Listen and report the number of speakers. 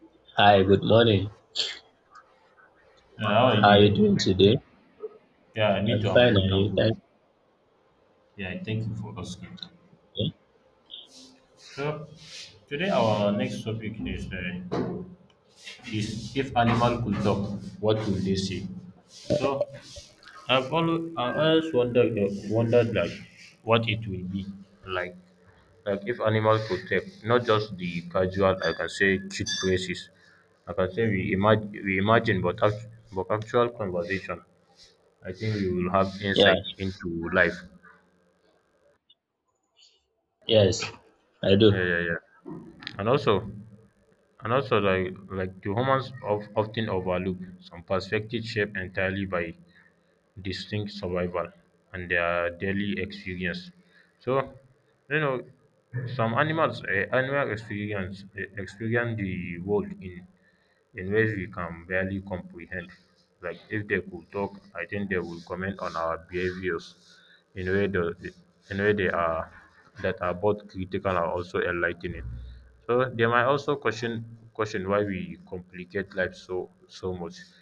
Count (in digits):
2